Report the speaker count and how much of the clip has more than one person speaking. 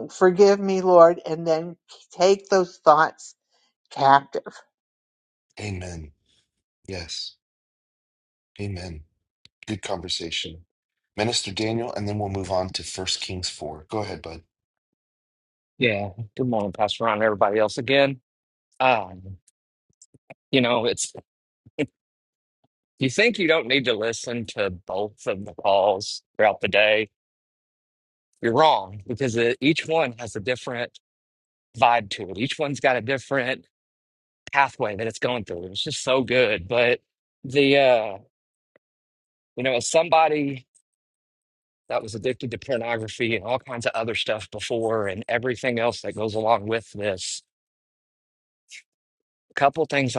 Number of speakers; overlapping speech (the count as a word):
three, no overlap